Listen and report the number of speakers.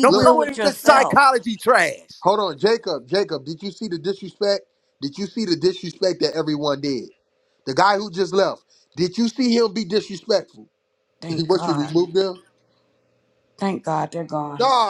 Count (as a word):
three